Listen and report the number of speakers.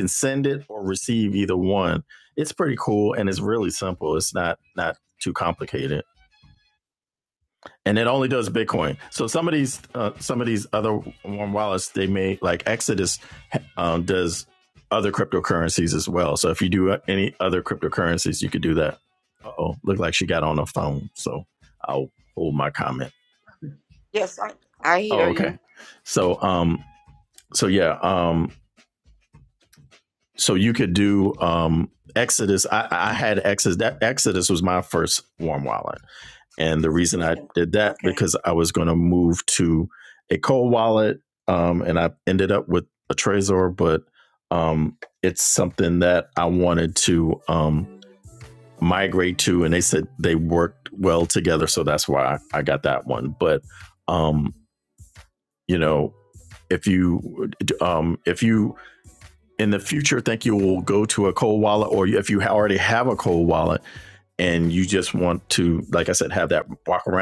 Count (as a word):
two